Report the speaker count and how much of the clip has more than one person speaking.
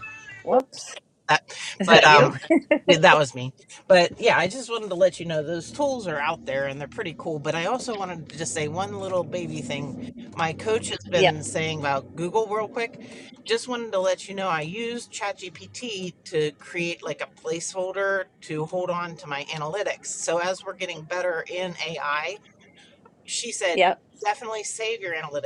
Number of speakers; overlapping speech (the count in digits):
2, about 3%